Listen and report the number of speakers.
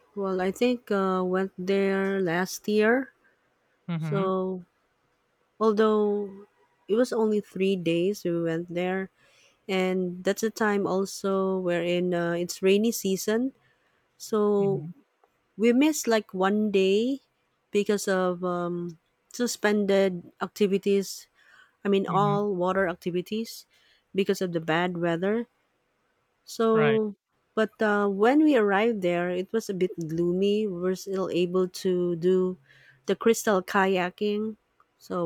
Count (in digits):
2